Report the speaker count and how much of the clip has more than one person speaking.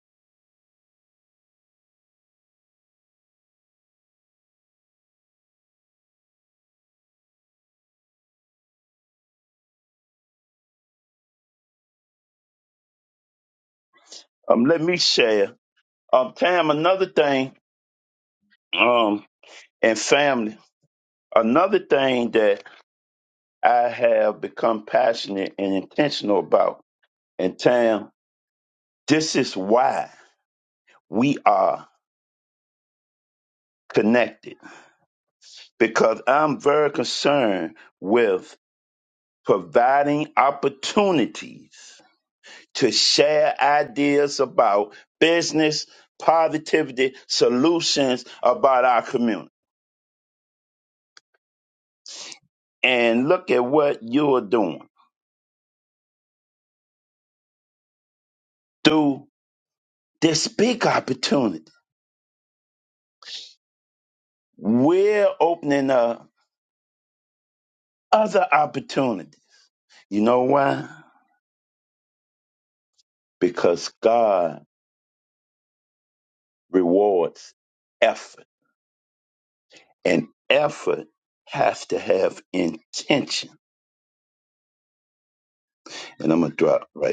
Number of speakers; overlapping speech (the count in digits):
1, no overlap